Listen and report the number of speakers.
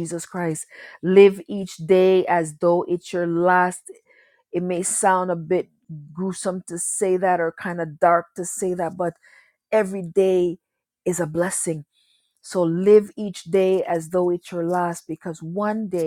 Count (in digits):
1